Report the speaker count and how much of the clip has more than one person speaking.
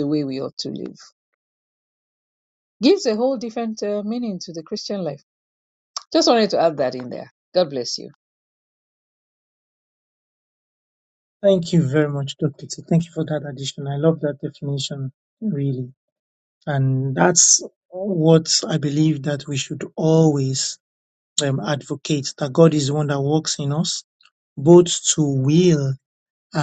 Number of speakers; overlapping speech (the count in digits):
2, no overlap